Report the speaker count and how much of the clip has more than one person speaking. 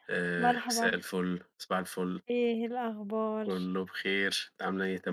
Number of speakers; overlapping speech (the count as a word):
two, about 14%